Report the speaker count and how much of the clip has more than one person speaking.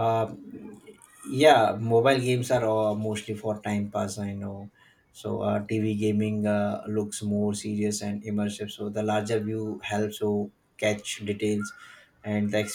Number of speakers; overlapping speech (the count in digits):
1, no overlap